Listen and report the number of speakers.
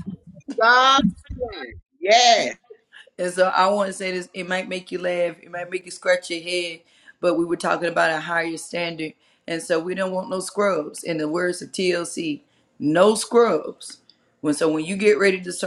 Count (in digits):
2